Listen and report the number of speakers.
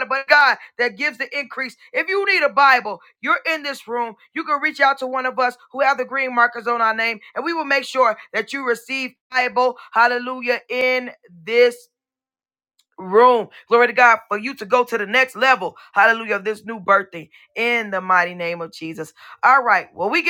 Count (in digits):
1